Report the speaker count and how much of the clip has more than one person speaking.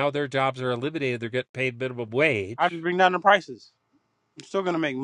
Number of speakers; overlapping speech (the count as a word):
two, about 4%